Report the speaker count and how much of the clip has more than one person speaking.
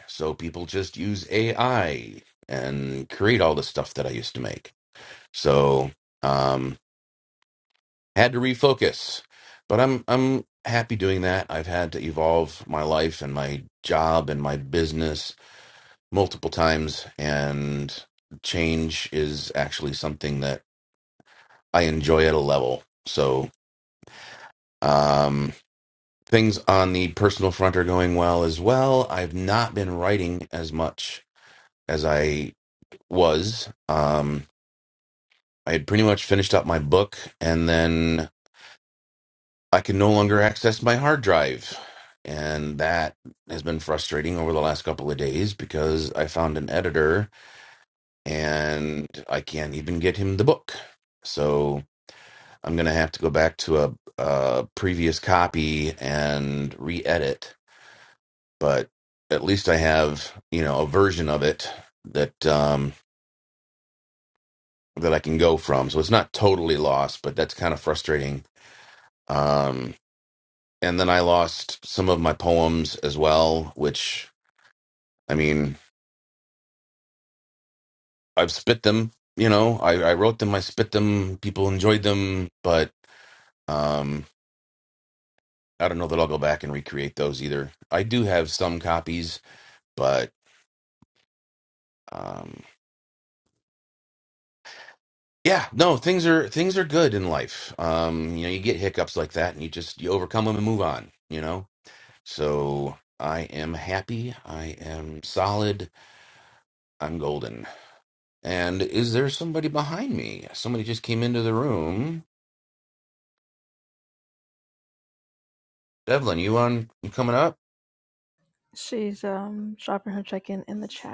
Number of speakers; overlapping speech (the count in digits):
2, no overlap